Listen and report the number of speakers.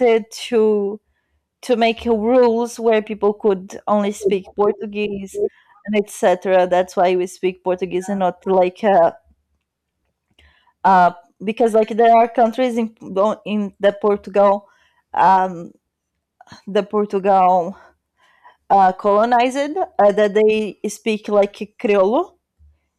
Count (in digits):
1